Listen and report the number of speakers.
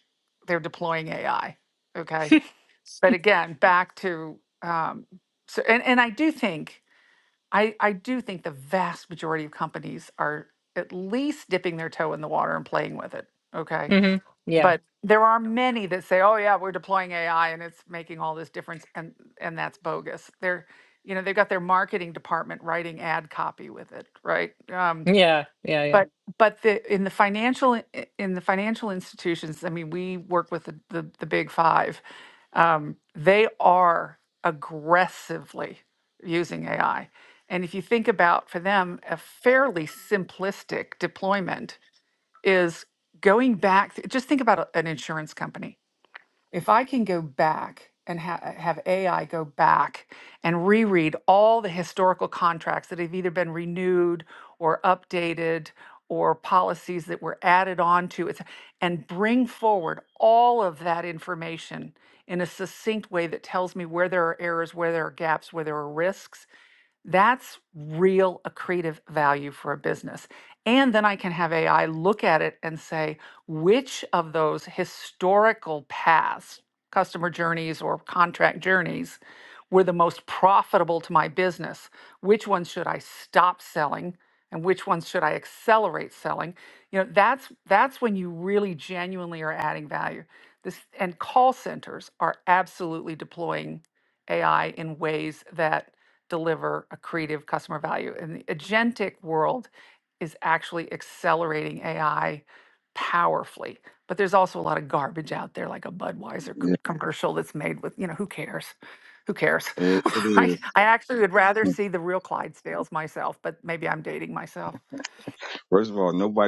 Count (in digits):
3